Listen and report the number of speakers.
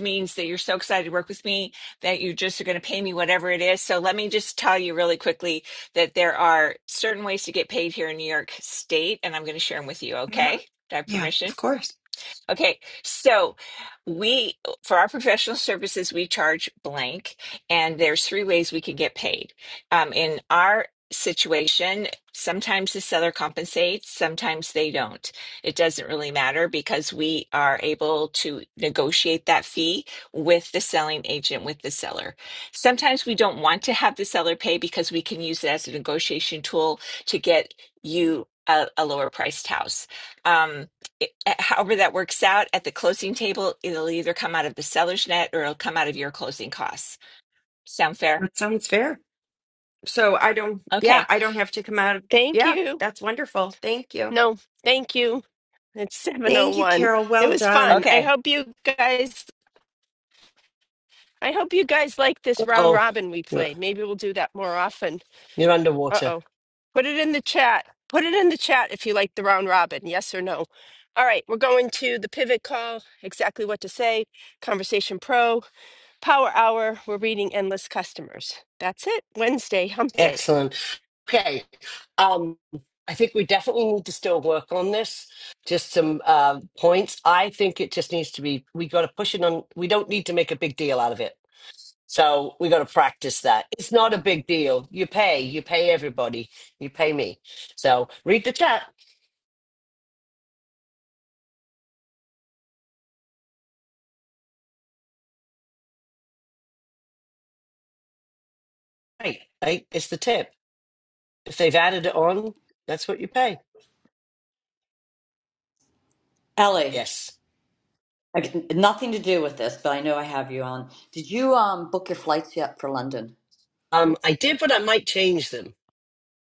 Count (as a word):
five